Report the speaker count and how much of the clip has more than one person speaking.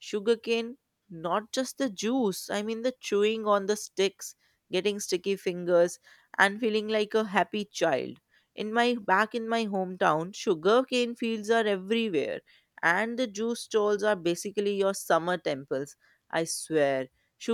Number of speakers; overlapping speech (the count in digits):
1, no overlap